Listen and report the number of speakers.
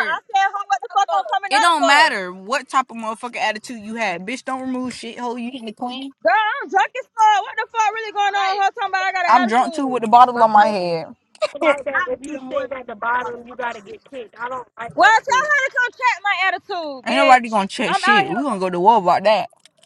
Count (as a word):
three